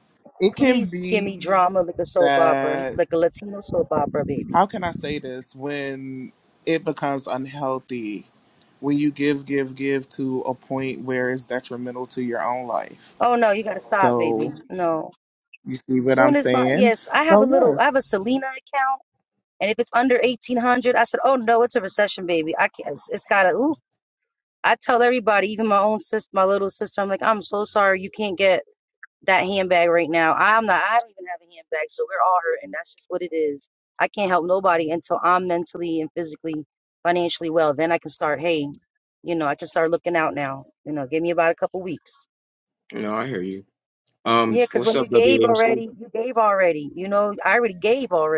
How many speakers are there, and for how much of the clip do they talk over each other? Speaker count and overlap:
three, about 10%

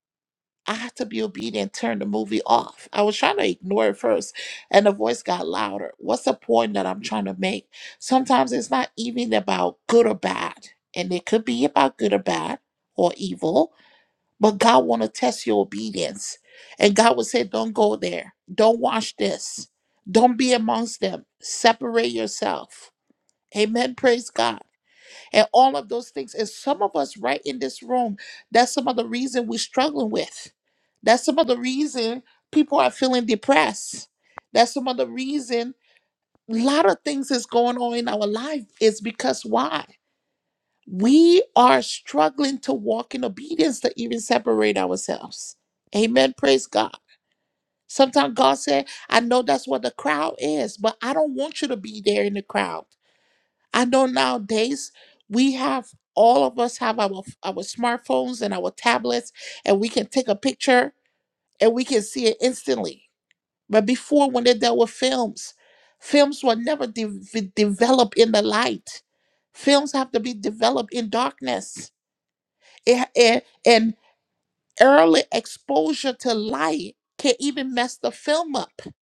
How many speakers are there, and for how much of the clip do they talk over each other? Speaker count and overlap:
one, no overlap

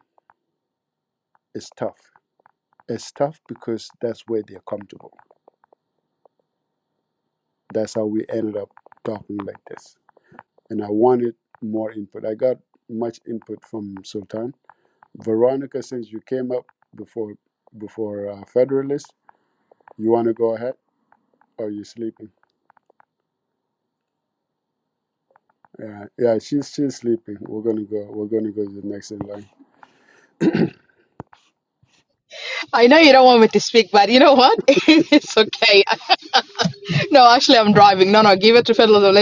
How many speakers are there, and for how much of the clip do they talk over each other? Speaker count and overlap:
two, no overlap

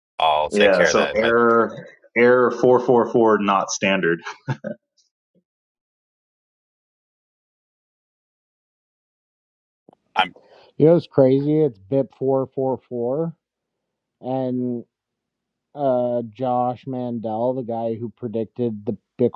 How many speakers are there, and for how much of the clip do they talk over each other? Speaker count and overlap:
three, about 4%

